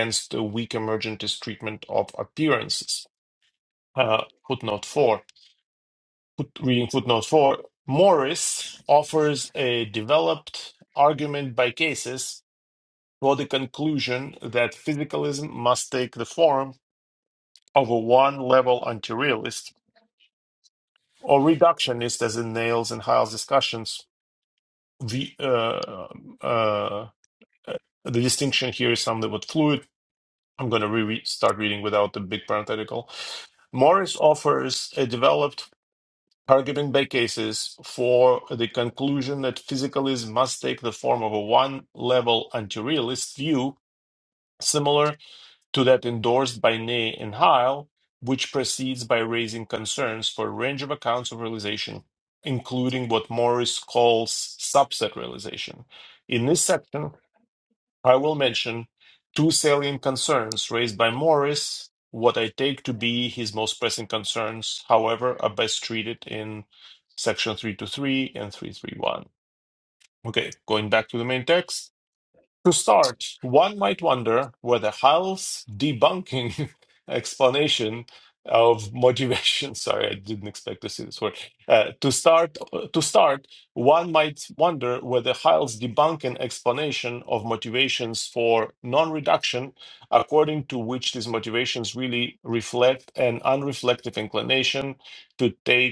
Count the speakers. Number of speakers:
1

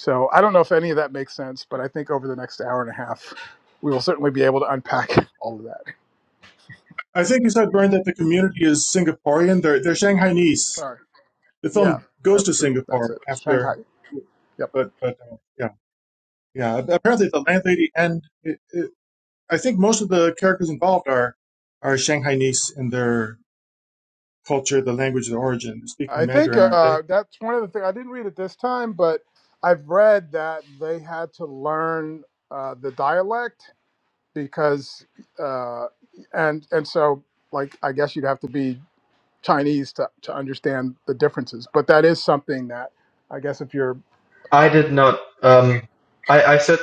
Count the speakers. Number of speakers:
3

